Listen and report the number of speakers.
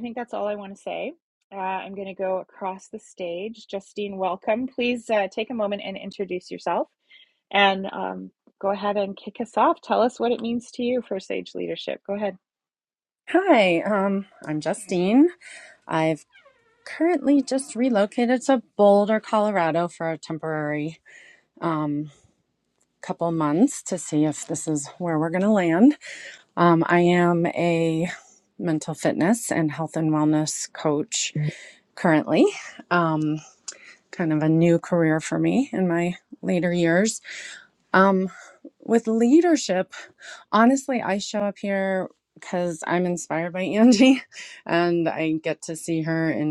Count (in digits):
2